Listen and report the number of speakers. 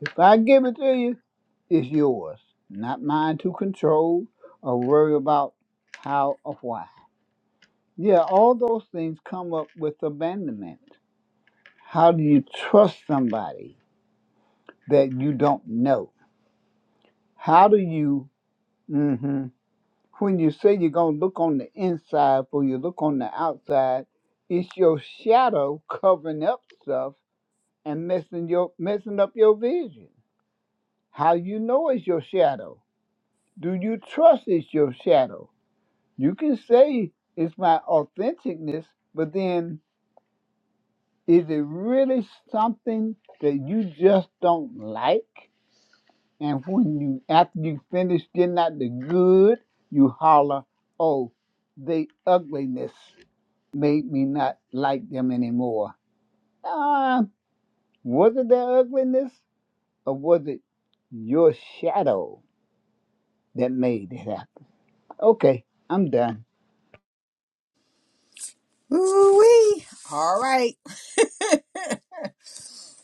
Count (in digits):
2